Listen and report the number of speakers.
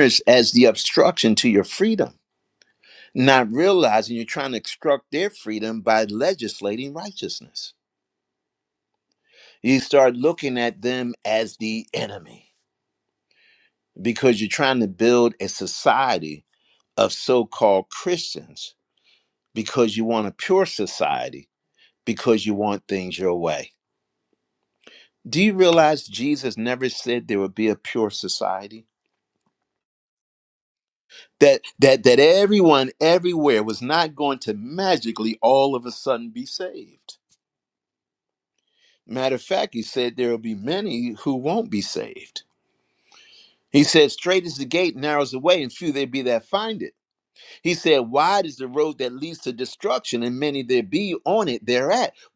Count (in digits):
1